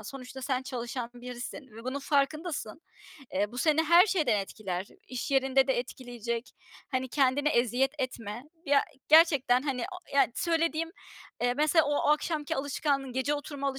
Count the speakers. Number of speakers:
1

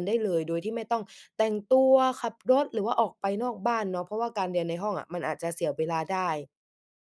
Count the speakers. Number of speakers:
1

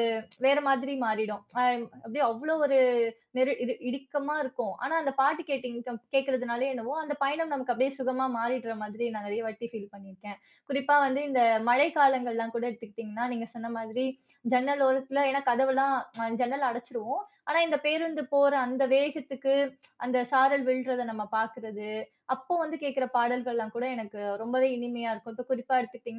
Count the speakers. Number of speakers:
1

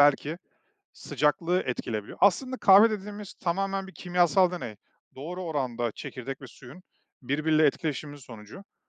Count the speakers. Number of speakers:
1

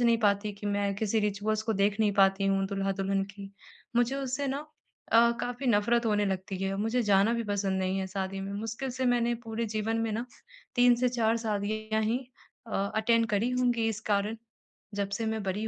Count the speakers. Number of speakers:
1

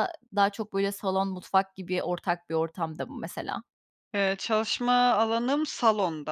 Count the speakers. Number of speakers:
2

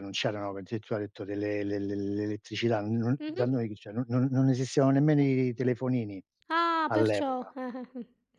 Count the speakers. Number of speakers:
2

